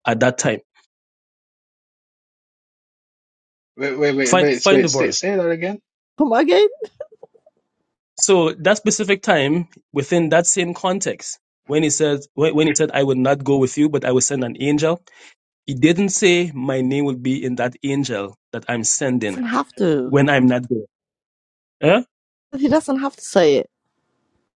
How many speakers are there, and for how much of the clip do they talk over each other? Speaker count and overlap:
three, about 4%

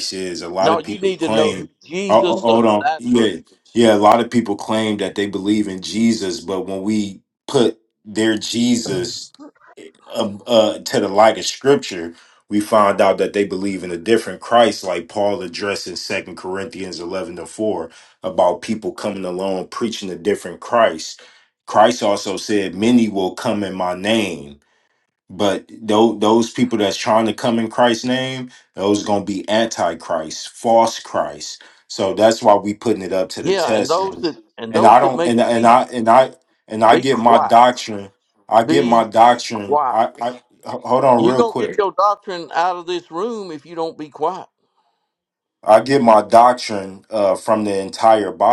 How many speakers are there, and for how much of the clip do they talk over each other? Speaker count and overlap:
two, about 12%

